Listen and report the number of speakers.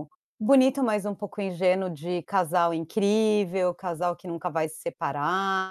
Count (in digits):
1